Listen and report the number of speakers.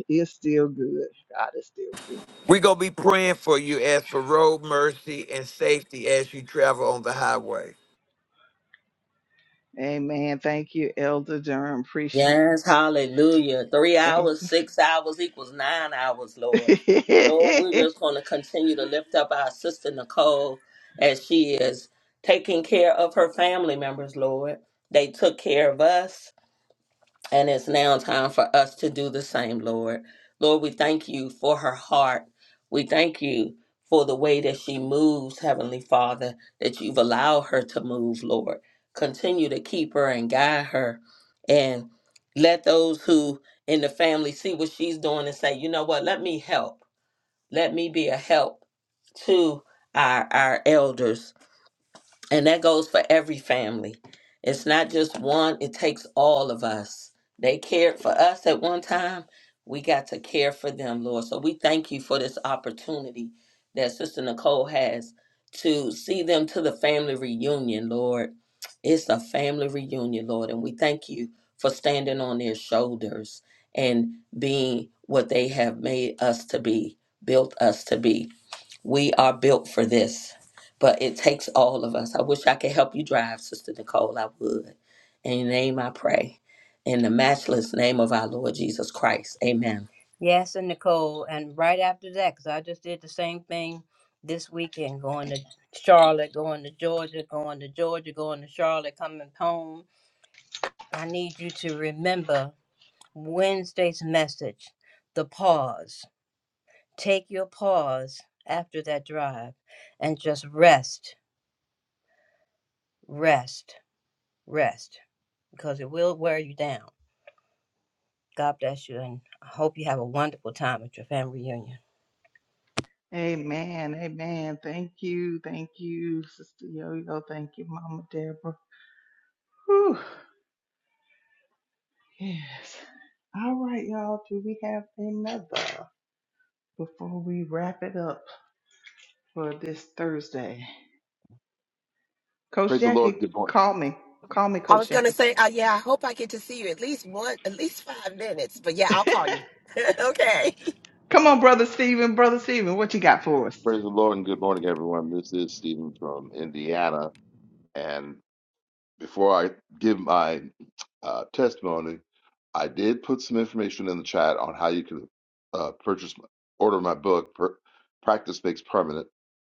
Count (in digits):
6